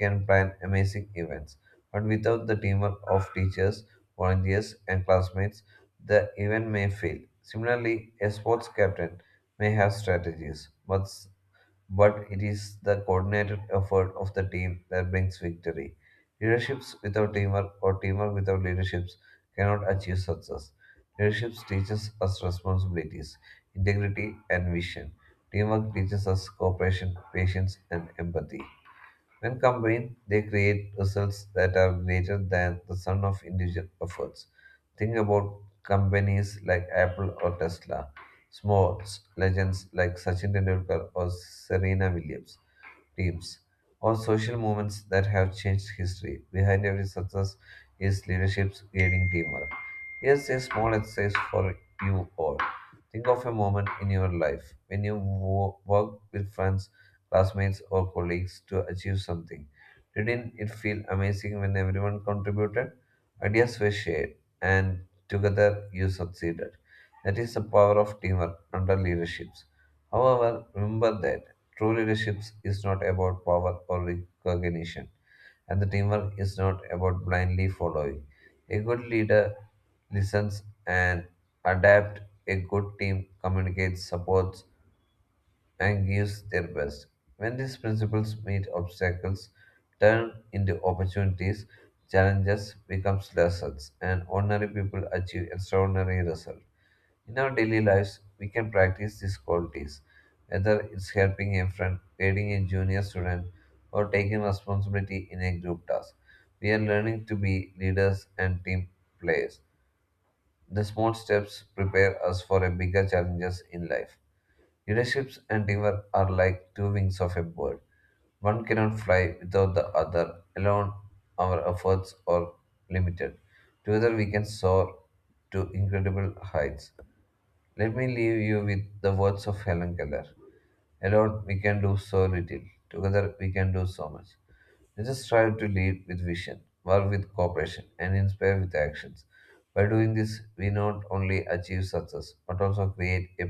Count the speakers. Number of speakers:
1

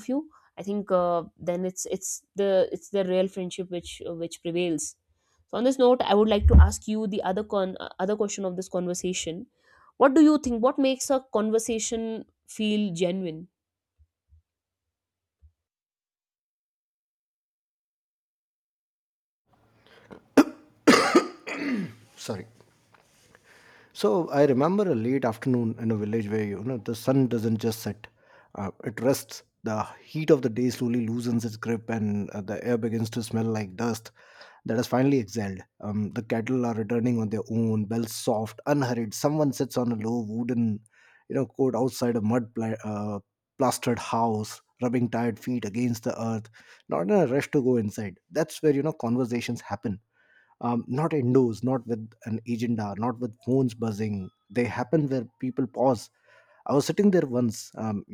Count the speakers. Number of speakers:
2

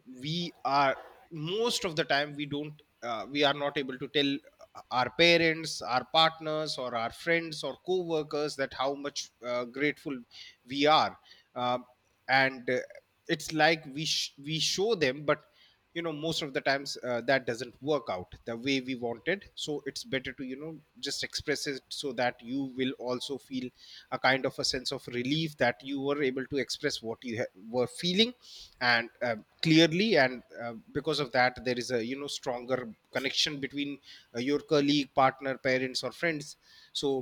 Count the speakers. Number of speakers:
1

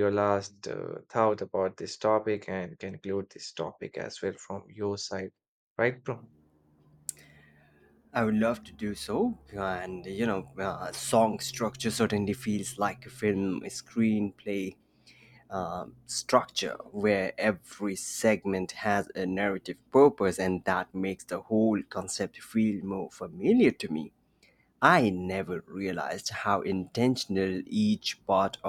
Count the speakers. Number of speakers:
2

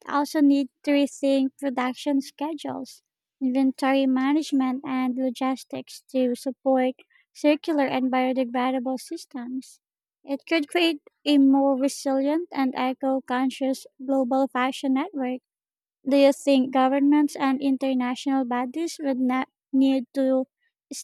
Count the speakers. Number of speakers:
1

